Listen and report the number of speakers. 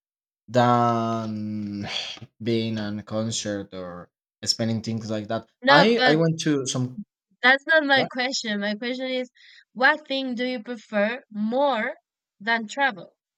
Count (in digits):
2